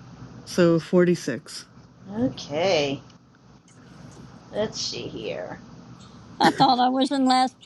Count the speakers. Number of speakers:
three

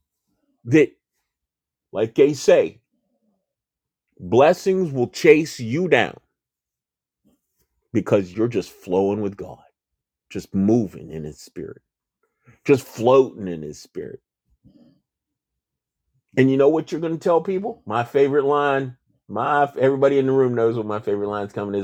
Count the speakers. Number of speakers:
one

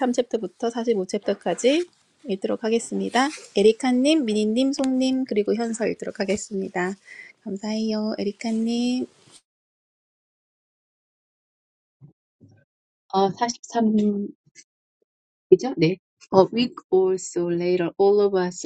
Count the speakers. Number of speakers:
two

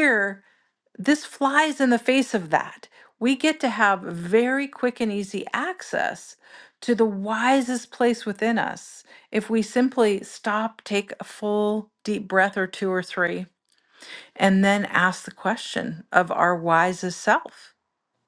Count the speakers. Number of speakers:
one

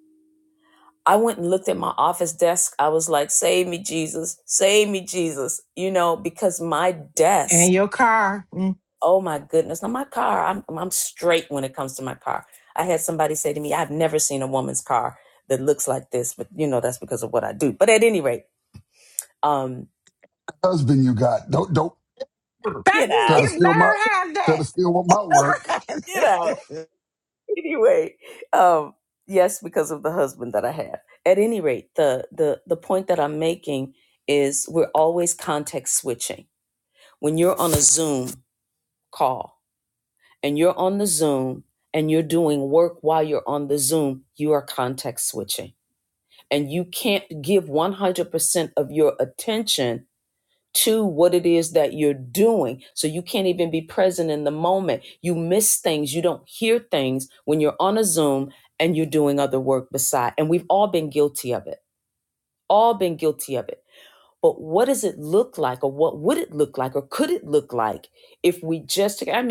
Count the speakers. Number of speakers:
three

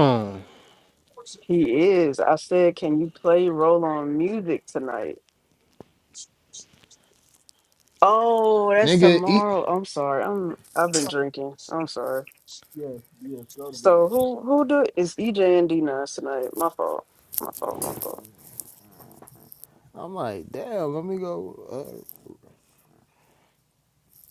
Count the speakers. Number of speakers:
three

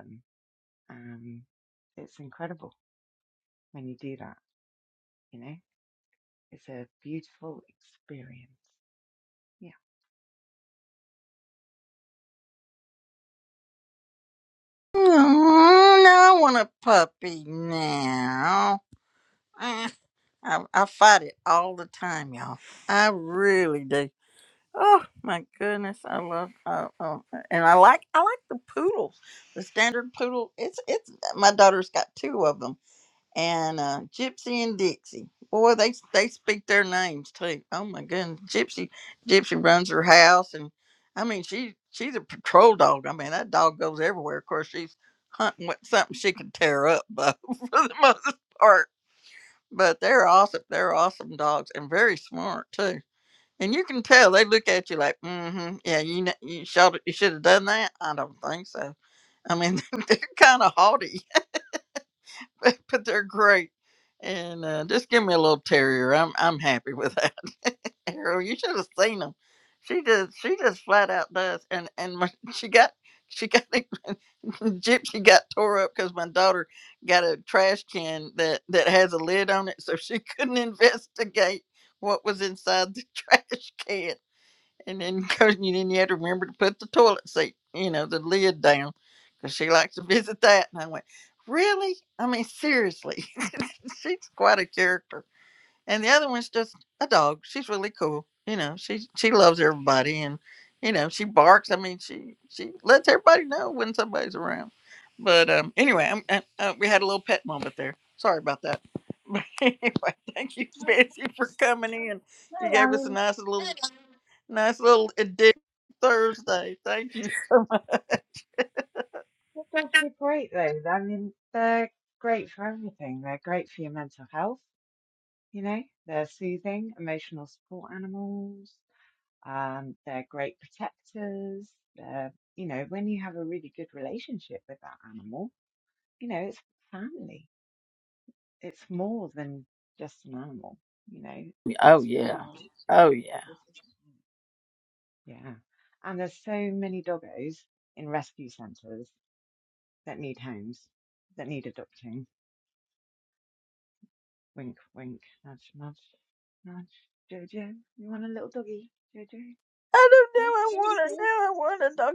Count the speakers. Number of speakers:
two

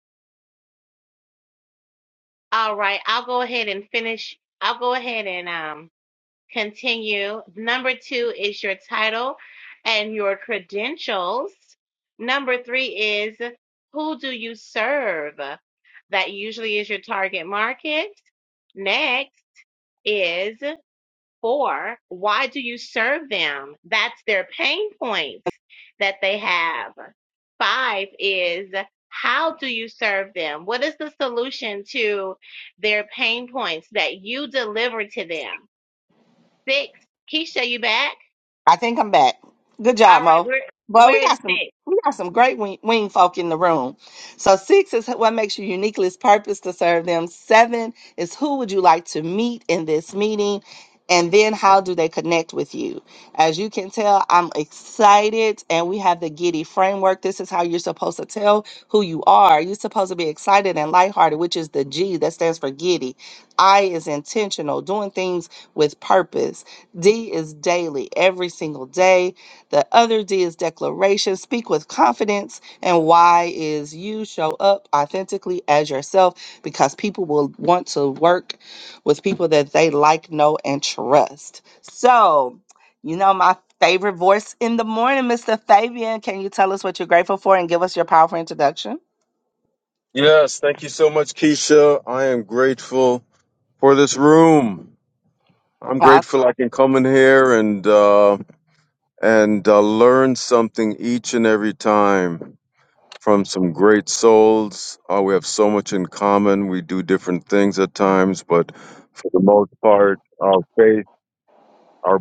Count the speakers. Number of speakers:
three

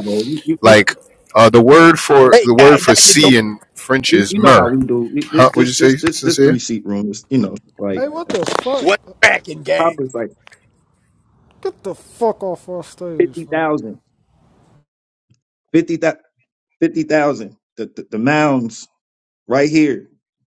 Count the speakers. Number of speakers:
four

